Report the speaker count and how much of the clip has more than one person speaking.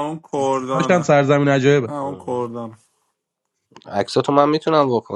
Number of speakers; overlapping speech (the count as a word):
three, about 14%